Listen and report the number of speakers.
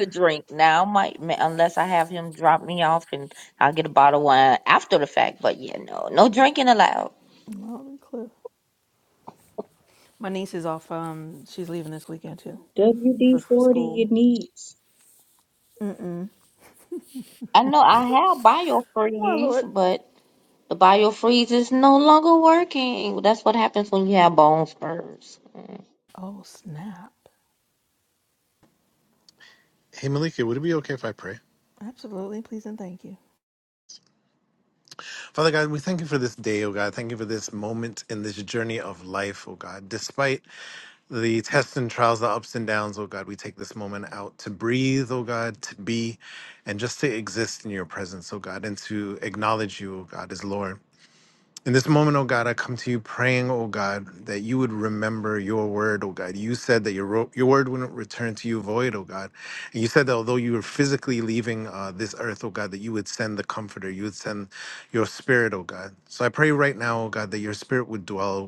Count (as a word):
four